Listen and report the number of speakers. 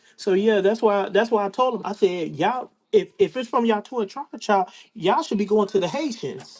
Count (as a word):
one